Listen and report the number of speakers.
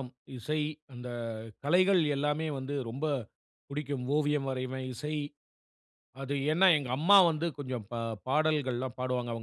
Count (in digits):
1